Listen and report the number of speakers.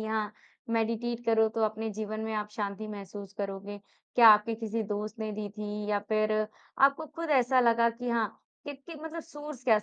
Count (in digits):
1